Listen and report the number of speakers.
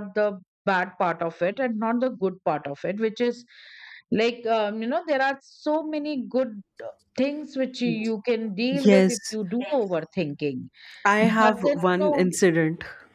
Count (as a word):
two